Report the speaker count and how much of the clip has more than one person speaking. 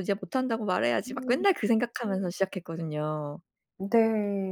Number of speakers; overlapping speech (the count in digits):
2, about 8%